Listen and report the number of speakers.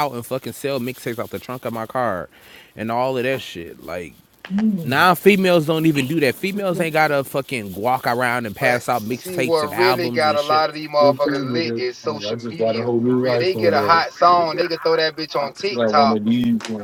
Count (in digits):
3